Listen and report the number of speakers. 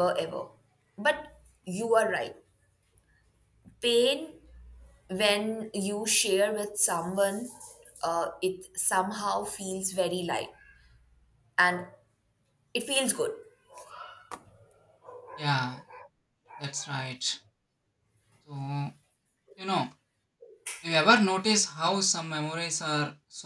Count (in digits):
2